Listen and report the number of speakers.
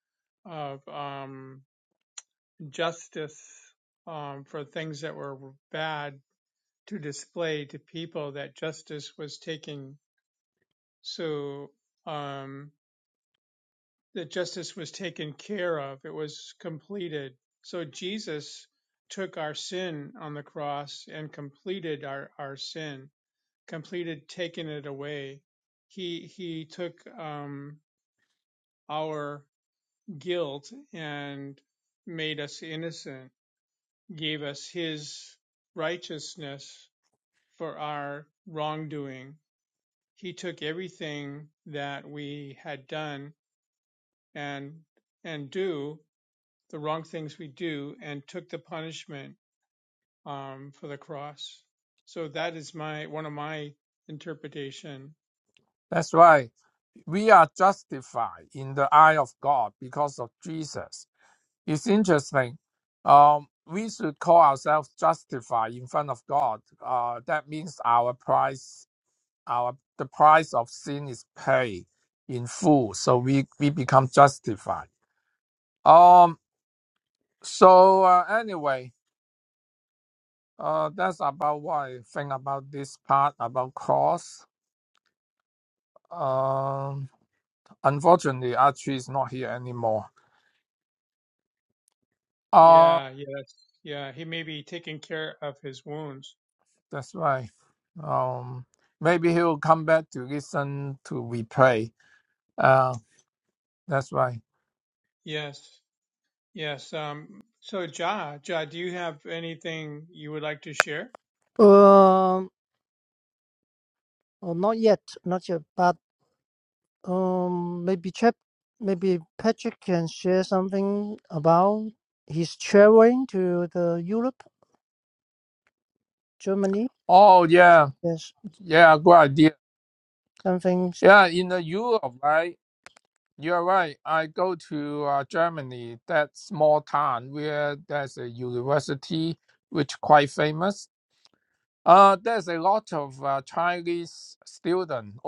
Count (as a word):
three